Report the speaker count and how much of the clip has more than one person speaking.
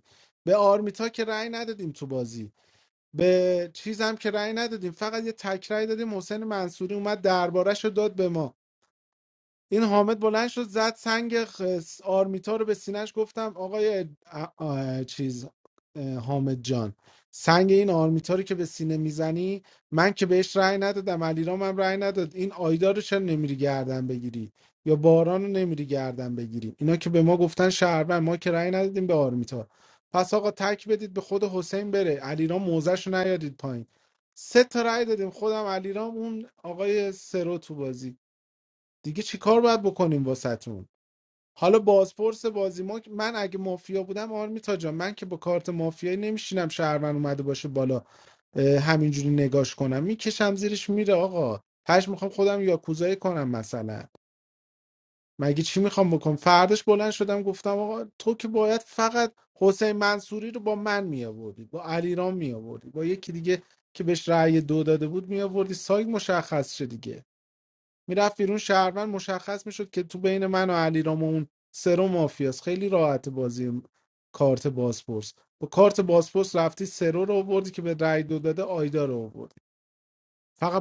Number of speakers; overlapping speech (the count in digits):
1, no overlap